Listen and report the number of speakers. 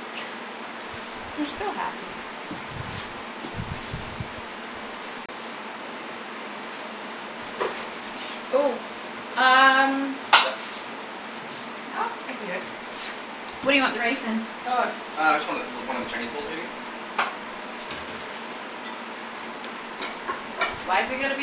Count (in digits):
2